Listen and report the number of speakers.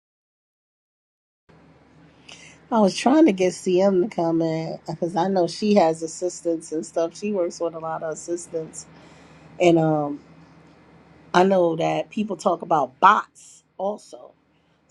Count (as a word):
one